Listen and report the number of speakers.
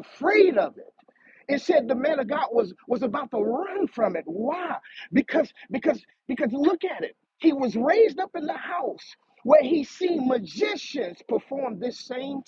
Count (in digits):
1